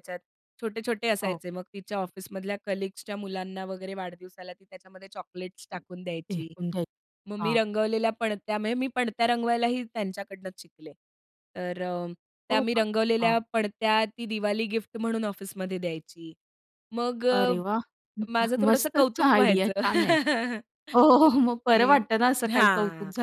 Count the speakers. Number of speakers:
2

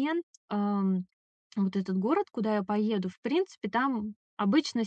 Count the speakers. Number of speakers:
1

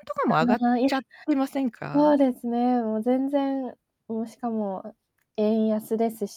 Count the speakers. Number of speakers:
2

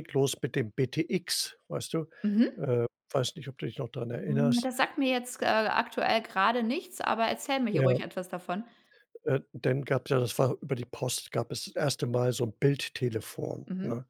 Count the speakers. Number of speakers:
2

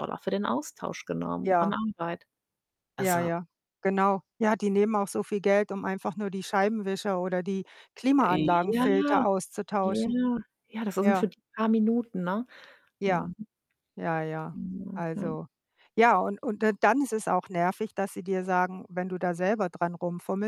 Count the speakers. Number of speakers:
2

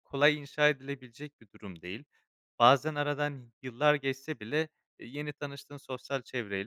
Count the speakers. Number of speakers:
1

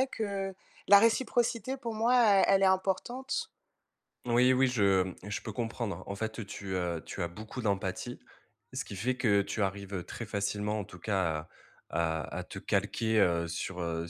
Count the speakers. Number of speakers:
2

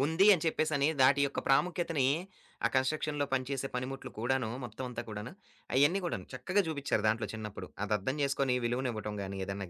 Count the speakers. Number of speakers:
1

